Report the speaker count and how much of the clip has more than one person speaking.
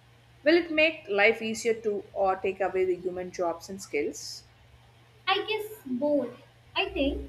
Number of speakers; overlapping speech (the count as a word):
two, no overlap